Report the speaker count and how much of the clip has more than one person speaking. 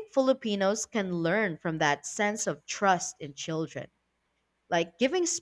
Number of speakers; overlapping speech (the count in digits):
1, no overlap